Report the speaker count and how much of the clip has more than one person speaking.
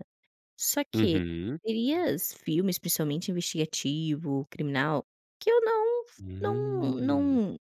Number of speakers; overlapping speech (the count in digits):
2, about 15%